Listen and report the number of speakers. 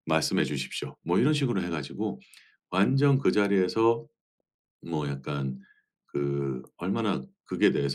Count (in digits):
1